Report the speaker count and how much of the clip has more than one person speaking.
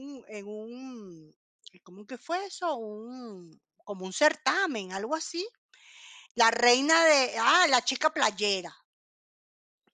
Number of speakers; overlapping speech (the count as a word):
one, no overlap